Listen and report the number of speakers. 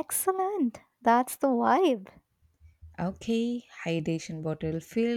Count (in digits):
2